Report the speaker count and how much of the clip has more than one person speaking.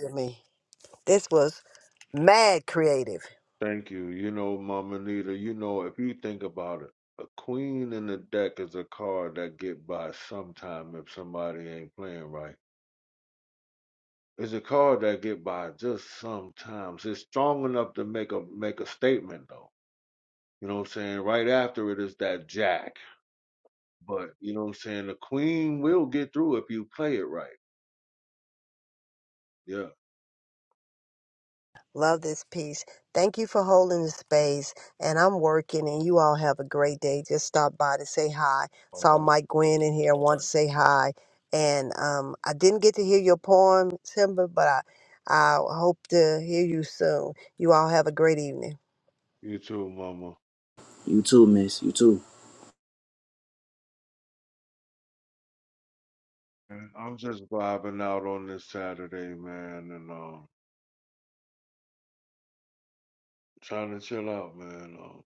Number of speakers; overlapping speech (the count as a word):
three, under 1%